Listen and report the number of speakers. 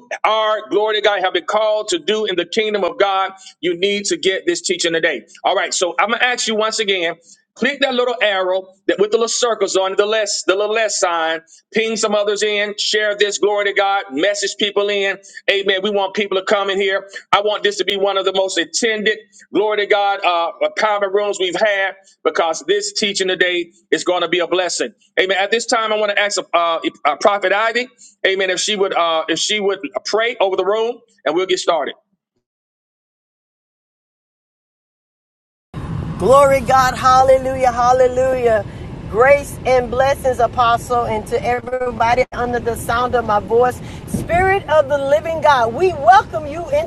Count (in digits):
2